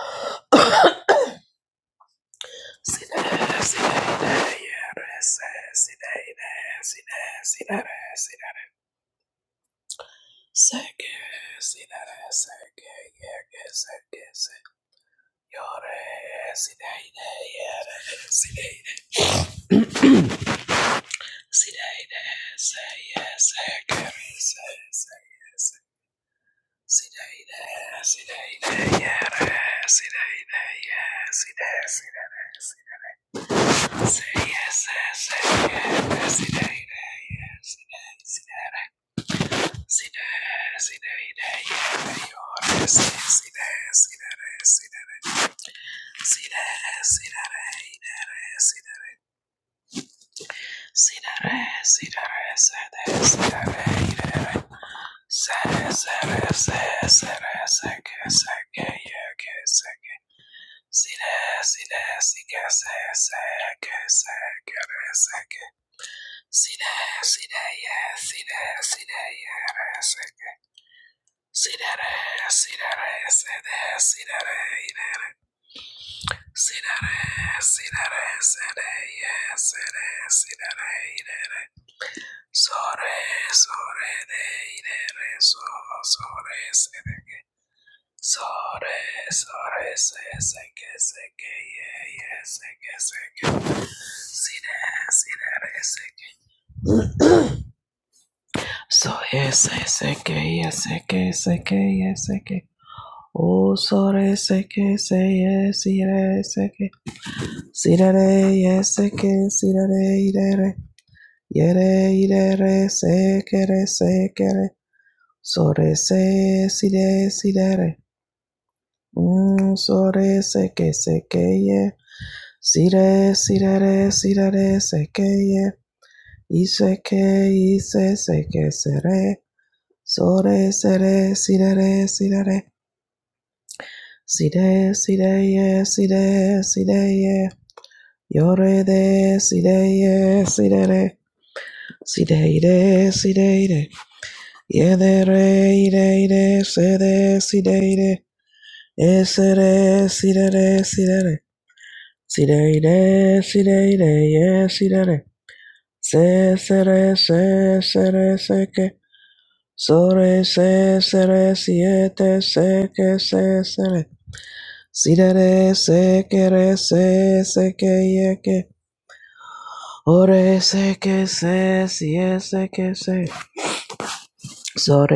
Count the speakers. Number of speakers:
one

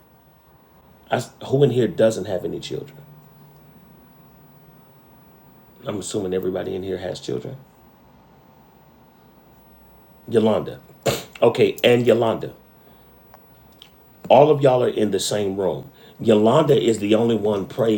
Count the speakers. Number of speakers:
one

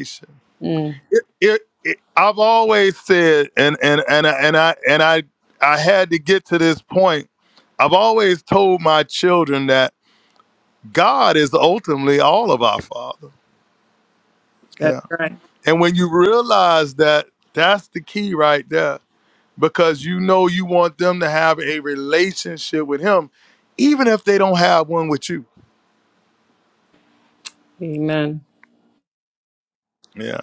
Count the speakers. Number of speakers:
two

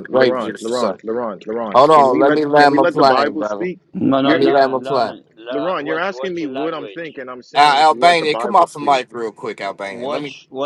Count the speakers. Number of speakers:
three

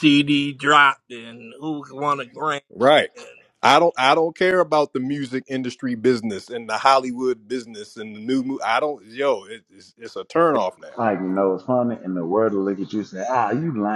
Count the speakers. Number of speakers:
three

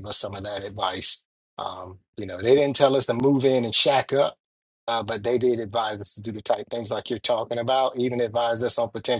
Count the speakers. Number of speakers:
one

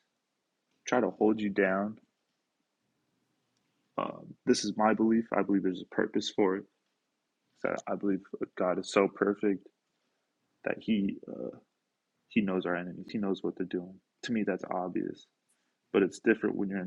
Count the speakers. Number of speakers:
one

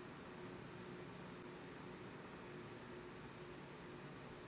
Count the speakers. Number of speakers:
zero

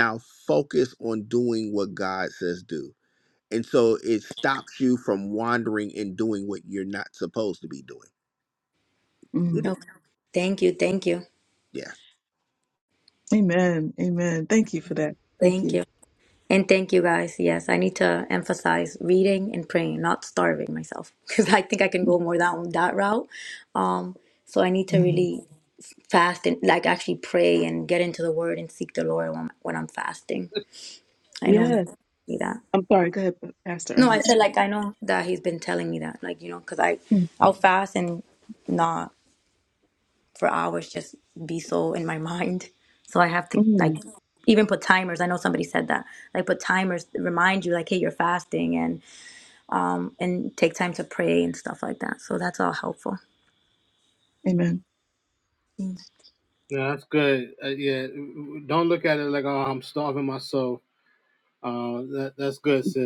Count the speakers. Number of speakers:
four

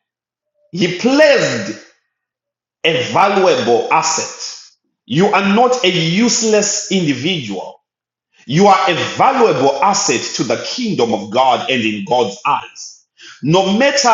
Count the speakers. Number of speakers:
one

